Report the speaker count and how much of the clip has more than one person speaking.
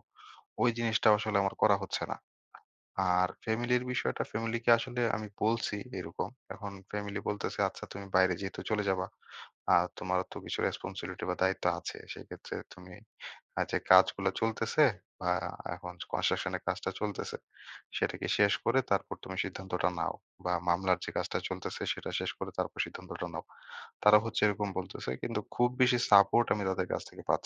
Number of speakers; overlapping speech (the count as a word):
one, no overlap